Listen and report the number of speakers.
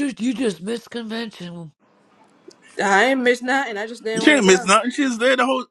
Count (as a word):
three